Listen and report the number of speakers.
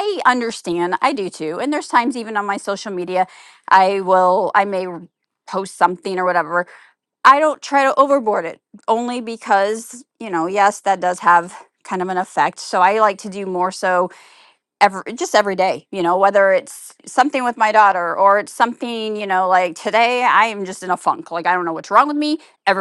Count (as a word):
one